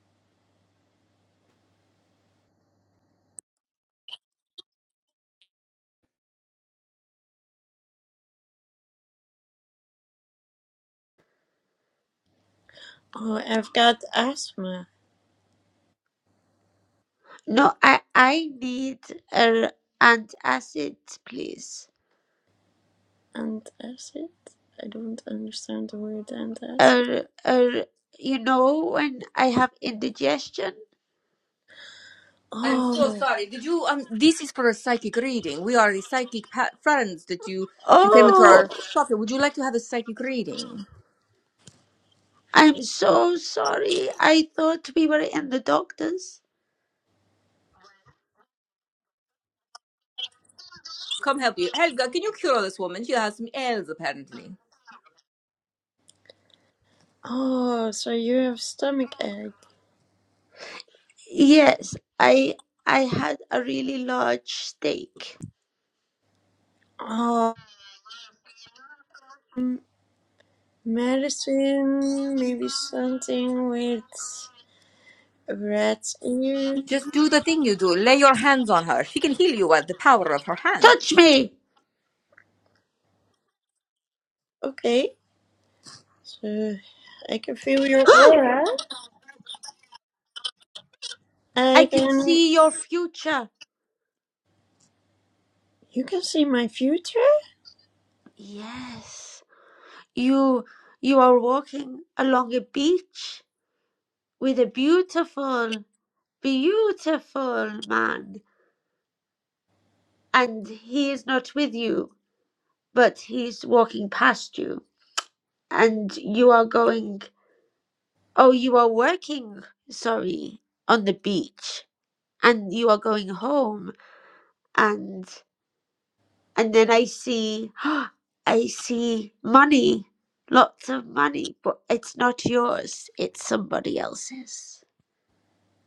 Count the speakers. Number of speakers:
three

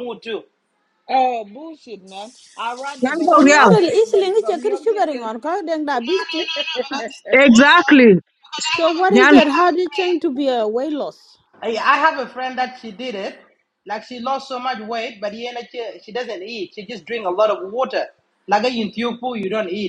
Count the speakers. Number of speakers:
four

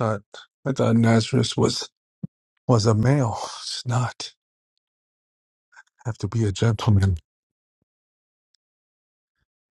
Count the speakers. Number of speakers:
one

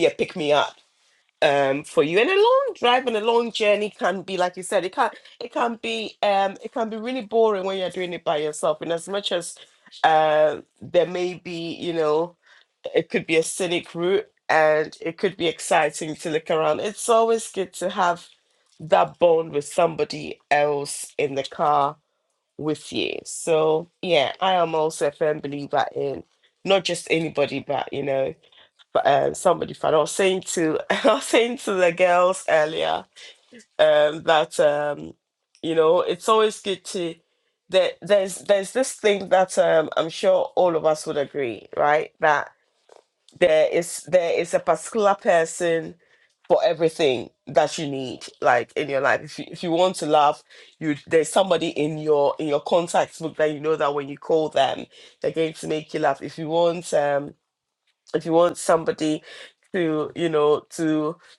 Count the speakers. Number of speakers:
one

